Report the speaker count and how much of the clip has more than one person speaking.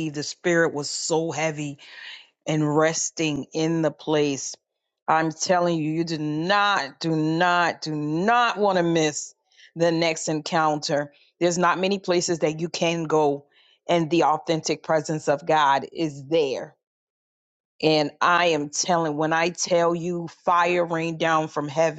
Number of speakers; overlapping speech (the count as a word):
one, no overlap